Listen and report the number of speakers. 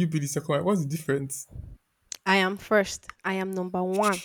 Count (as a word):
two